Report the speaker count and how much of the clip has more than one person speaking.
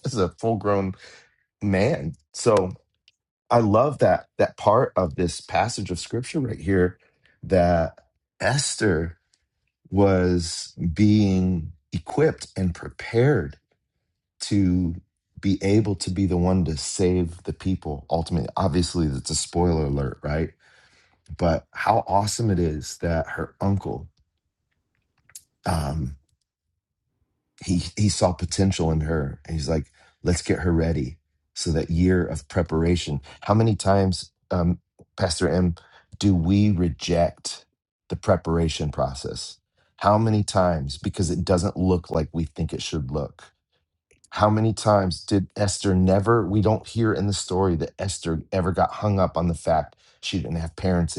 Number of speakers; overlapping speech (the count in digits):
1, no overlap